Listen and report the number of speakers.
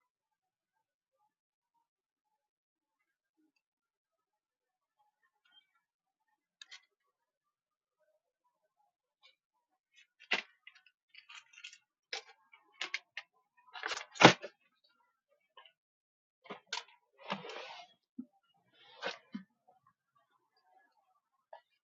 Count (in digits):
0